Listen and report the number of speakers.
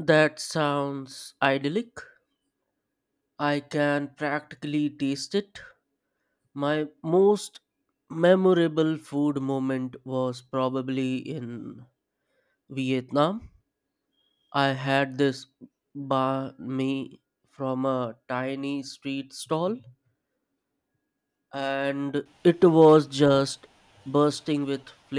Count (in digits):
1